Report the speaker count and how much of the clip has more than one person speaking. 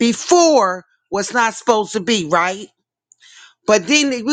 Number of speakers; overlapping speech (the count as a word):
one, no overlap